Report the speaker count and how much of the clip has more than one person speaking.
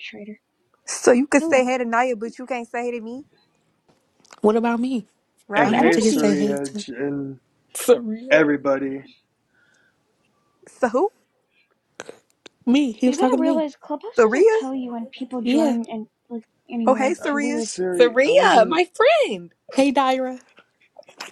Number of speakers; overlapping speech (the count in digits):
5, about 22%